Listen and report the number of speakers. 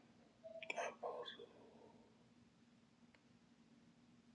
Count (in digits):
0